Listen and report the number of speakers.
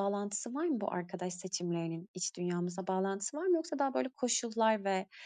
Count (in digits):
1